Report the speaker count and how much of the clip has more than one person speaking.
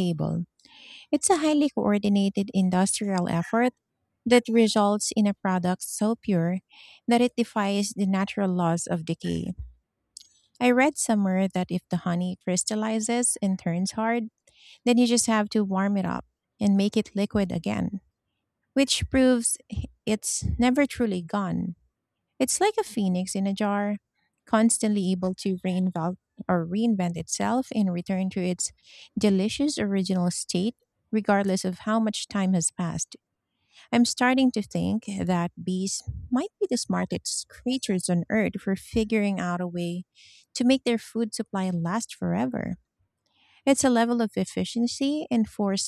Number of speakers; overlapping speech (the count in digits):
1, no overlap